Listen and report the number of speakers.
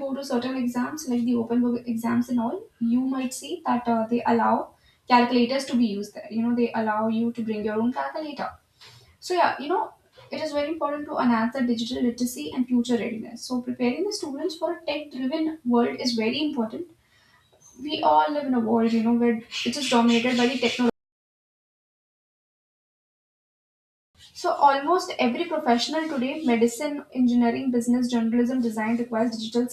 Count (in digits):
1